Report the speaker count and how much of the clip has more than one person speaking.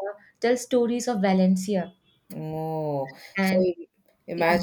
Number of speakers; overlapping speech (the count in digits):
2, about 12%